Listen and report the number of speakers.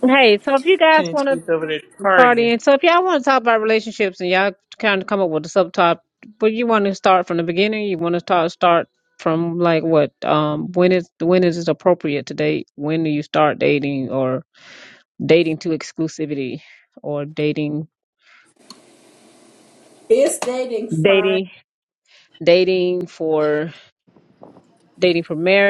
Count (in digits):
3